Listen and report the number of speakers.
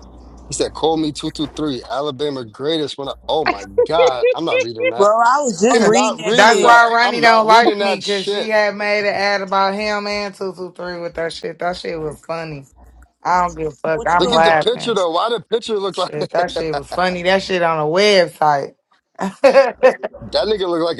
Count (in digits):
3